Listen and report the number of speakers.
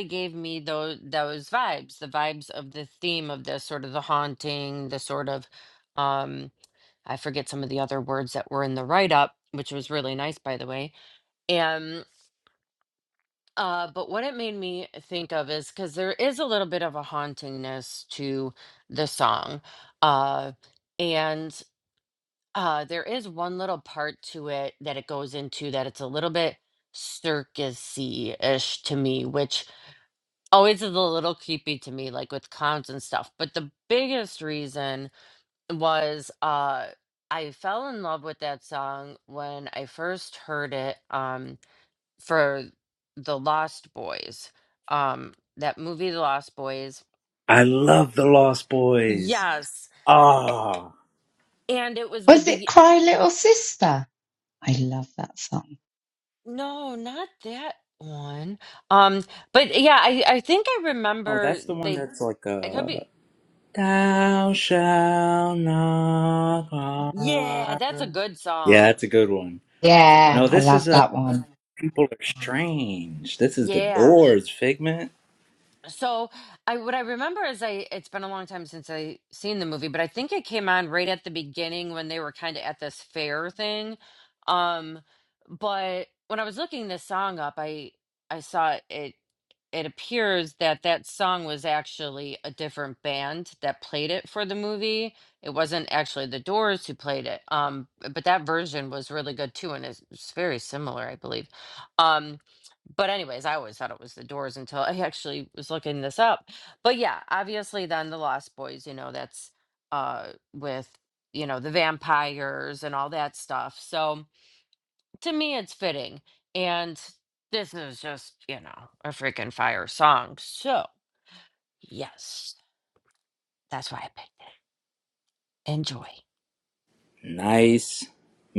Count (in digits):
3